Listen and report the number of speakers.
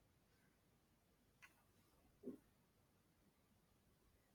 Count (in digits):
0